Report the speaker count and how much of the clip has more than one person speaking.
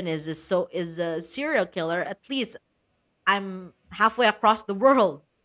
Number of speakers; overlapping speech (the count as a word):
one, no overlap